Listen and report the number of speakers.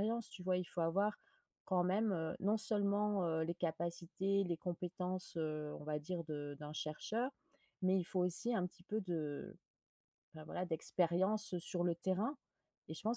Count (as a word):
one